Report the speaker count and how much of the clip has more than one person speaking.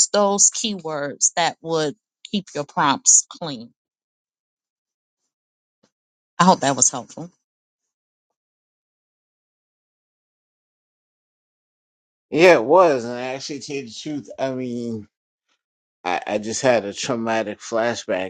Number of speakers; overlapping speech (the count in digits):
2, no overlap